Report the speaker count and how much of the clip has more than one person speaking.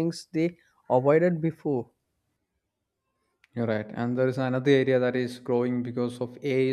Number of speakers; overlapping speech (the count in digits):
2, no overlap